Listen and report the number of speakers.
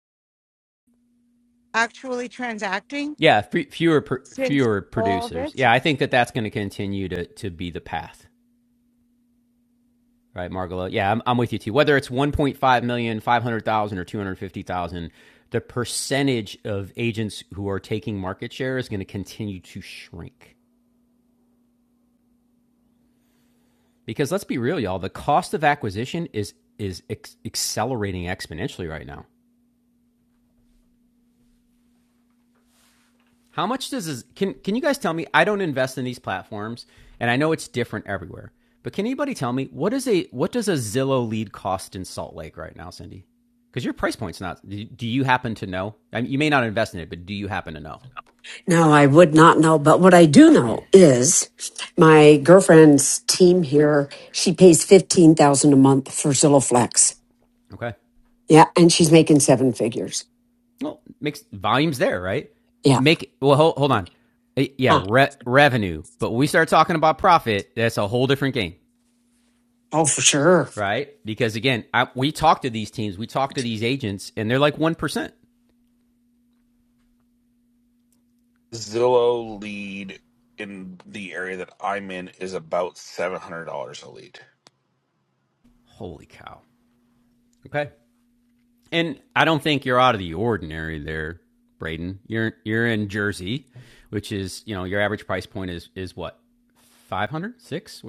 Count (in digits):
4